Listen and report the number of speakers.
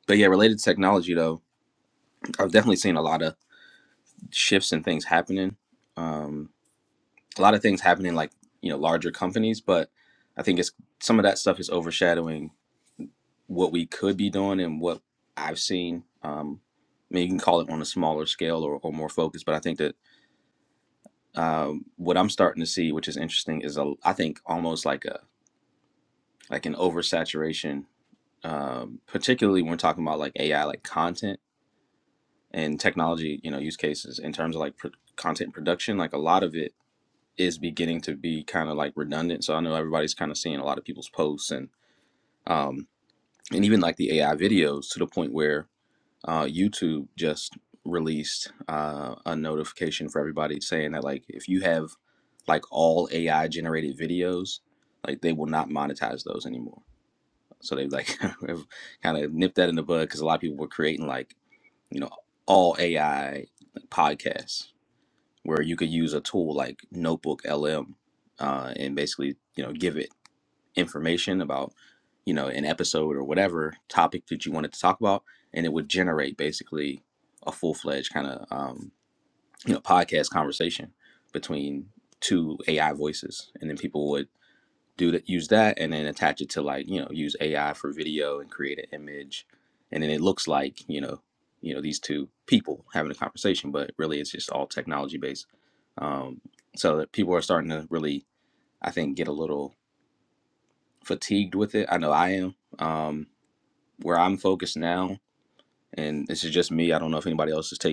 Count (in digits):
1